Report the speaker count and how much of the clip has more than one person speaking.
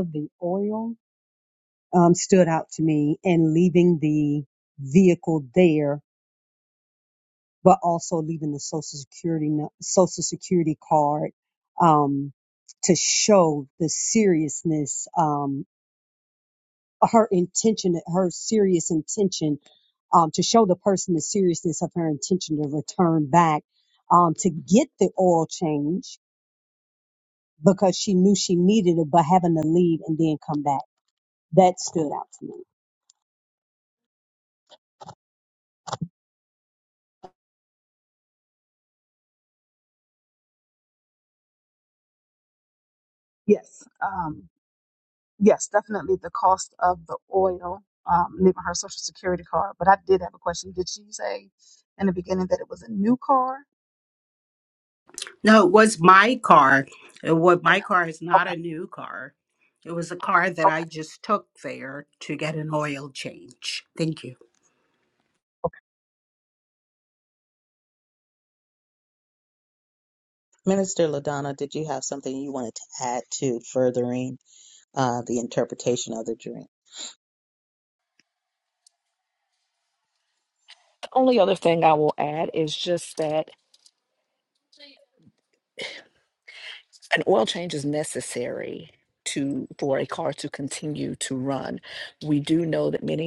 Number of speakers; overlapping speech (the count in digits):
5, under 1%